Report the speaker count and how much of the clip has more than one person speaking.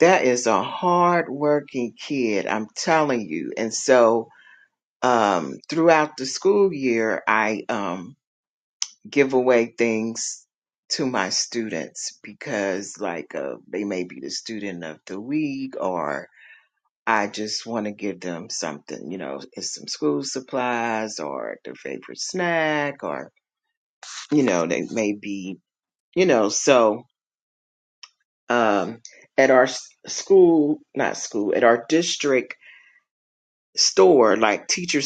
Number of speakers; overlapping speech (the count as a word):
one, no overlap